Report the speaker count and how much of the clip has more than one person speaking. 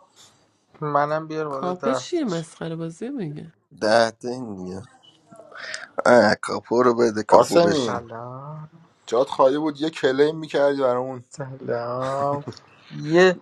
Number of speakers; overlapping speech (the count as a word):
four, about 11%